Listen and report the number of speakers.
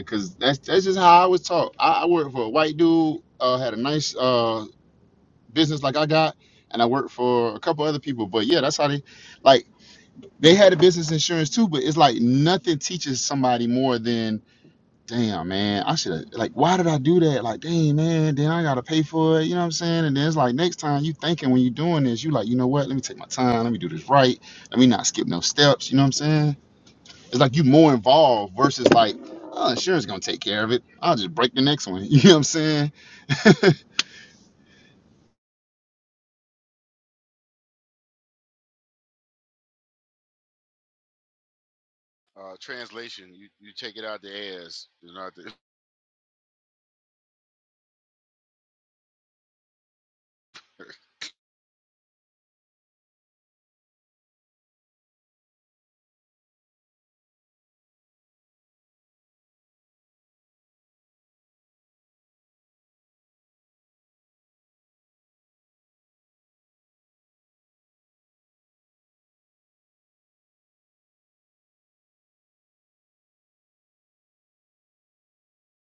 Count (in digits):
2